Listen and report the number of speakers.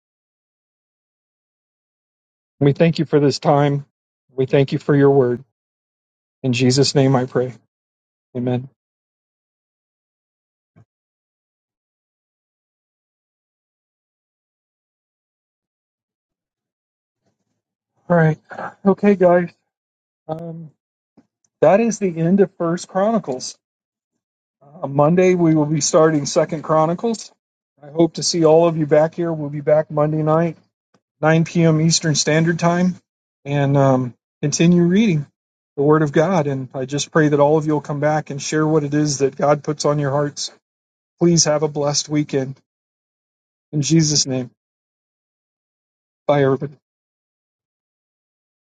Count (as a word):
one